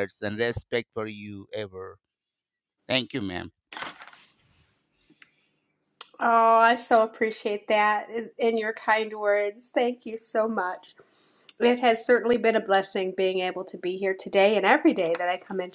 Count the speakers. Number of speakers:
2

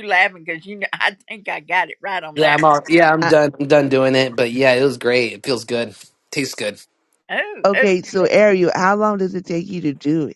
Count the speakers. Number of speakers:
3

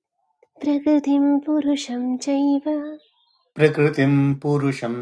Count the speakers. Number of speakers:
2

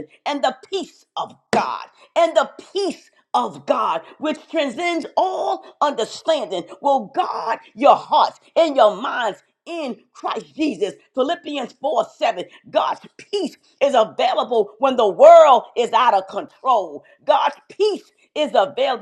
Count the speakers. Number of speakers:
1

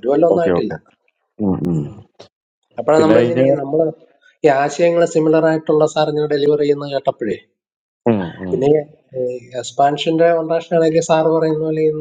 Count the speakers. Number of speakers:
2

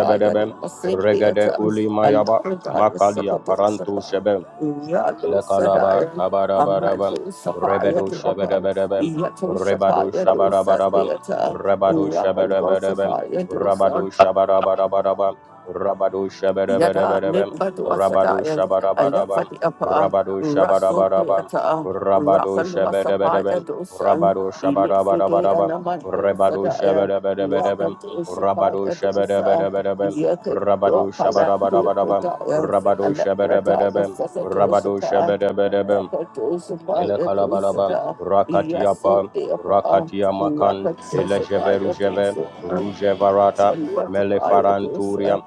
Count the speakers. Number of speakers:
2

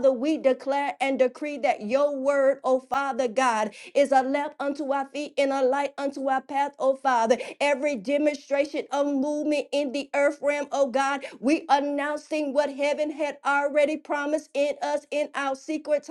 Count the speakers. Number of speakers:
1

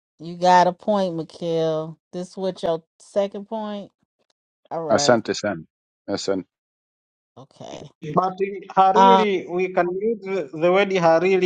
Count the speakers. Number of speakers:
3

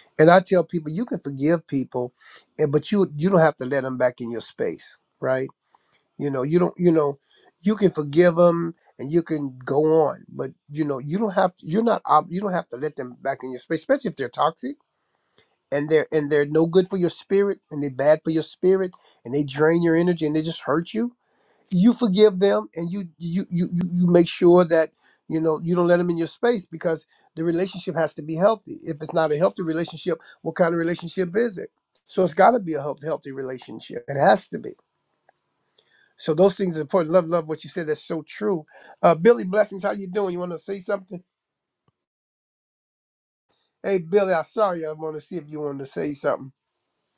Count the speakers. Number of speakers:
1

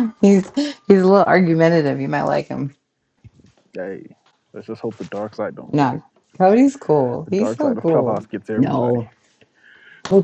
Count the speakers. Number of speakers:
2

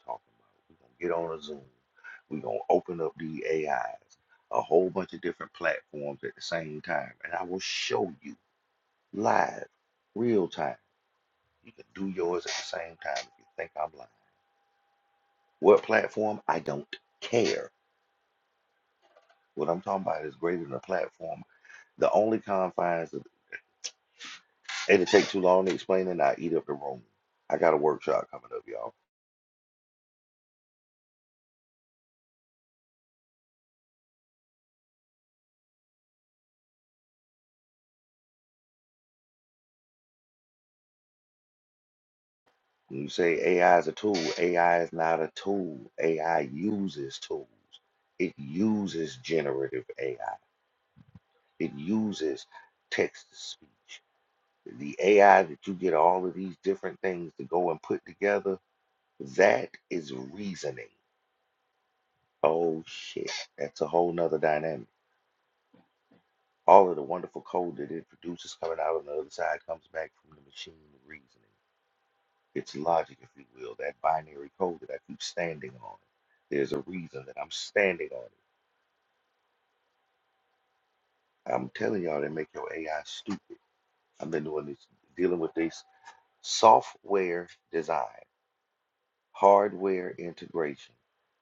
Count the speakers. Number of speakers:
1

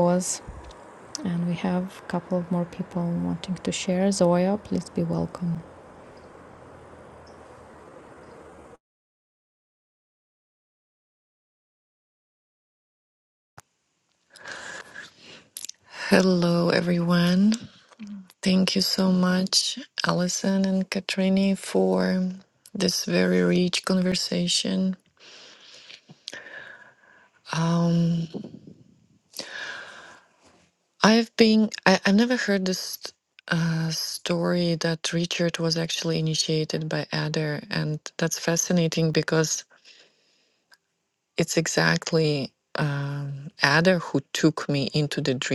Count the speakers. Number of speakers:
2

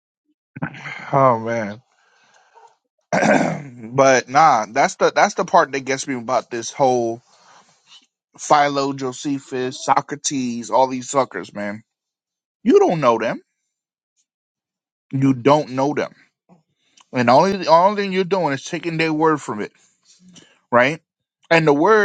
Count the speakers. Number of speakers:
1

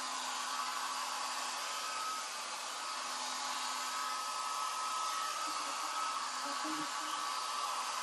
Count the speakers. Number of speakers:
0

